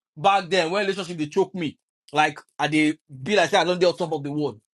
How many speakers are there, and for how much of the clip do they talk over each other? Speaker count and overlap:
one, no overlap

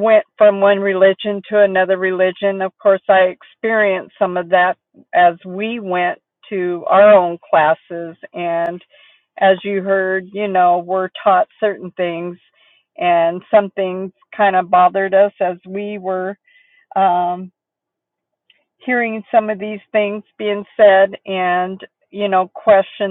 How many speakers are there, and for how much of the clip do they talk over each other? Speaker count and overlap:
one, no overlap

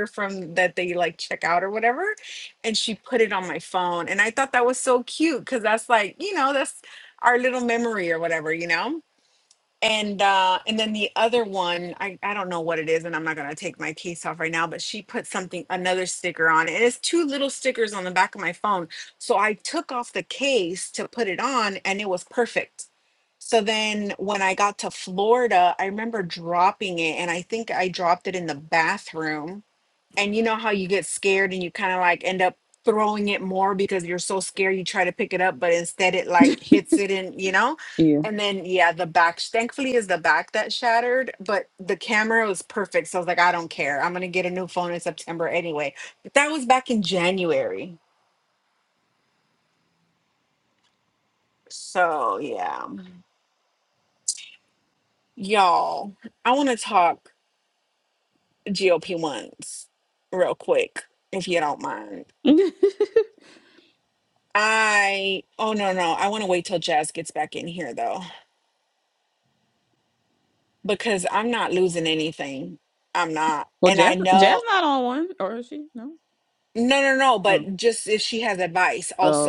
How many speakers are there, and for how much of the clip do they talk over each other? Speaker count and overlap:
two, about 2%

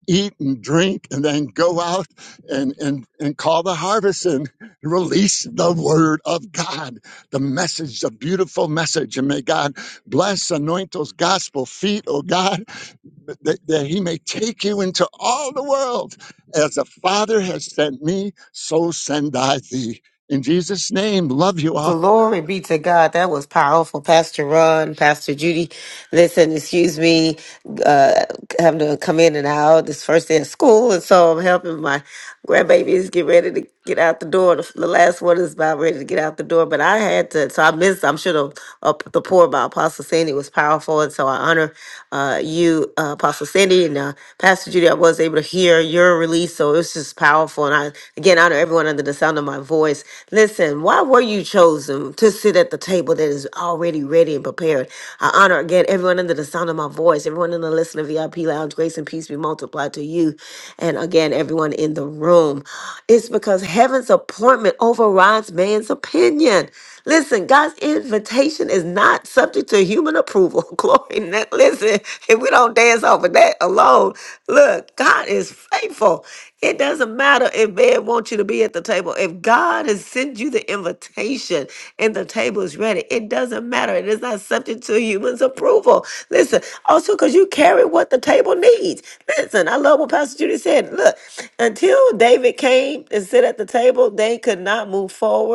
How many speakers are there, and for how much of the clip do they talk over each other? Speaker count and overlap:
two, under 1%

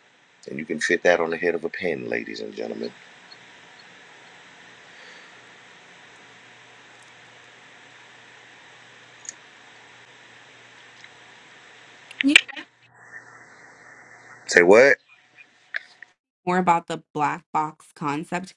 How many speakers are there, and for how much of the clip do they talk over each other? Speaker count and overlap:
two, no overlap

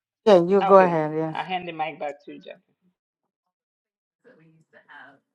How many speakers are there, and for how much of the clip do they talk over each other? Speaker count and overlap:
two, about 7%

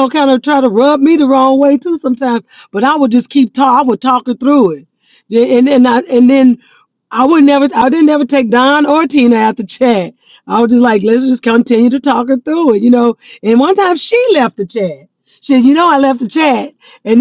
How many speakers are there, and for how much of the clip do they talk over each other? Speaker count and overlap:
one, no overlap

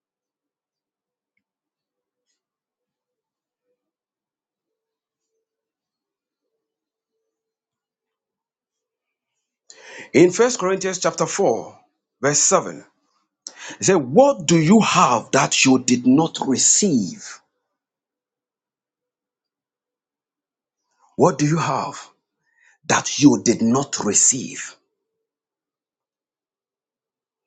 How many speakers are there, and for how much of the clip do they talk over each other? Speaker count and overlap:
one, no overlap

